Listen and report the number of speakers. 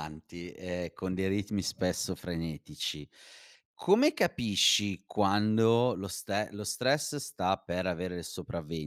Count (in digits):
1